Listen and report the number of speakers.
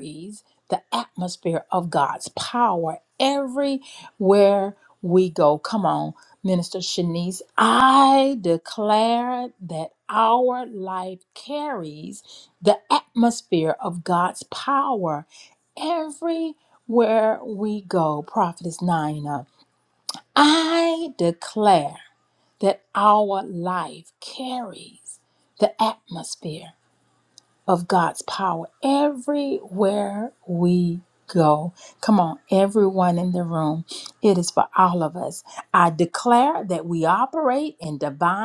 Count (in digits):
1